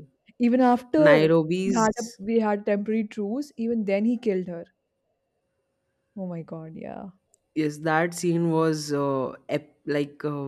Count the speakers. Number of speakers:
2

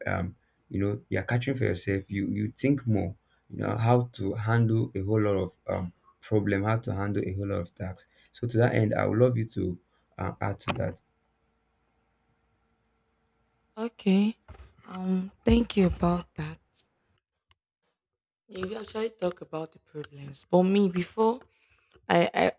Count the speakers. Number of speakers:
2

